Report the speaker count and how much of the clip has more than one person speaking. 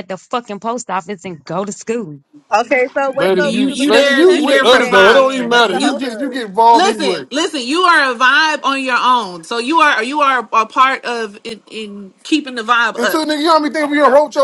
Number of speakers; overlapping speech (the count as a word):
four, about 27%